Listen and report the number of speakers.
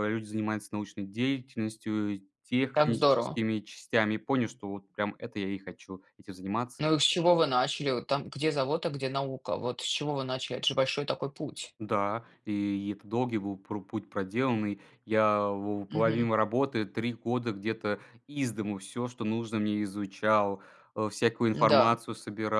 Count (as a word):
two